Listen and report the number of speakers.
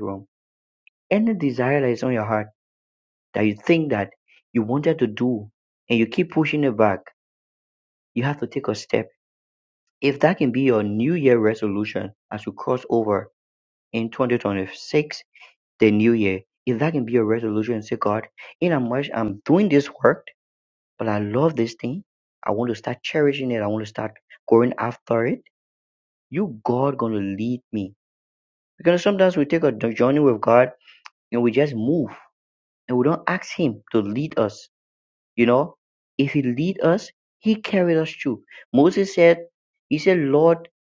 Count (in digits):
1